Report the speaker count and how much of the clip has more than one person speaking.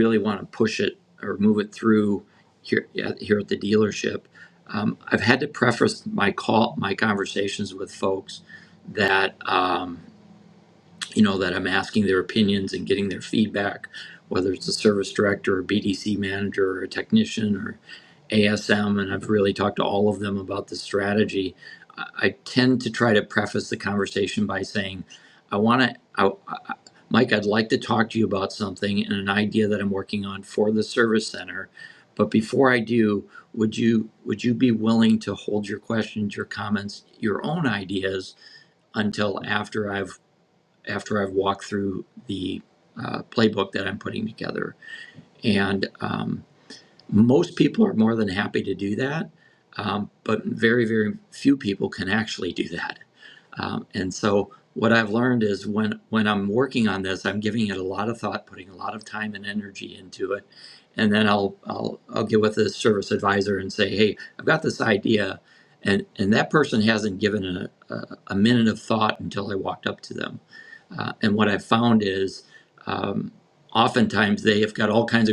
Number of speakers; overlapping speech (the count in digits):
1, no overlap